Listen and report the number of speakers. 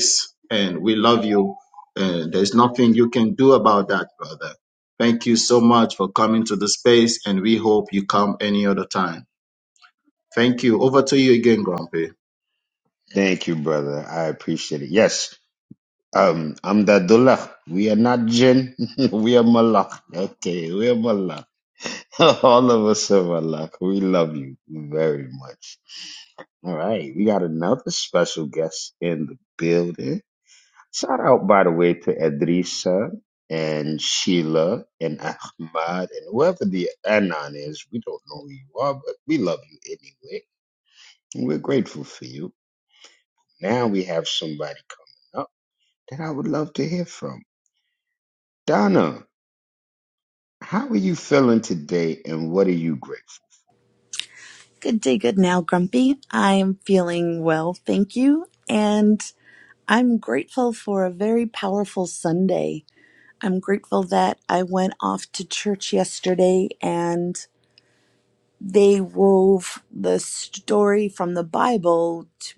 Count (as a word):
three